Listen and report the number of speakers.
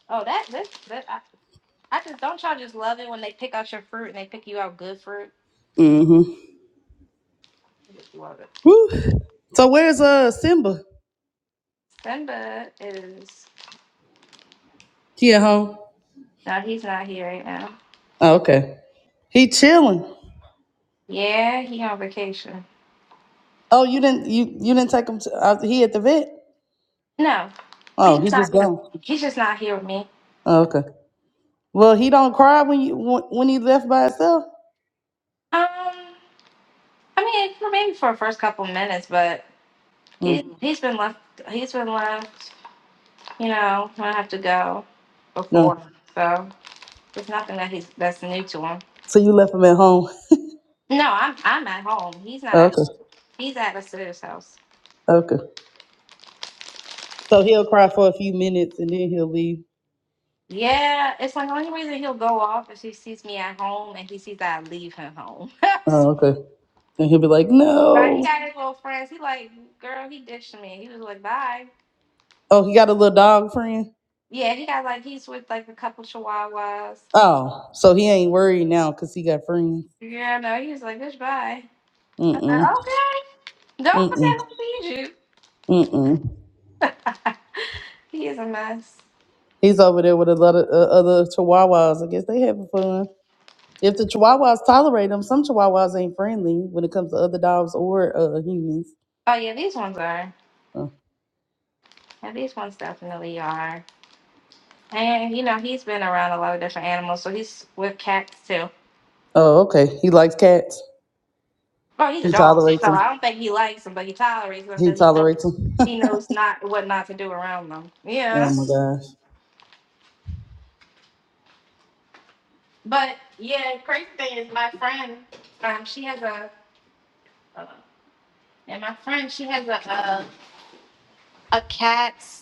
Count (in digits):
2